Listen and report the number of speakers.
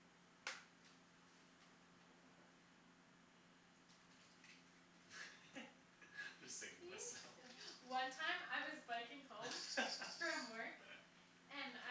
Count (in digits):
2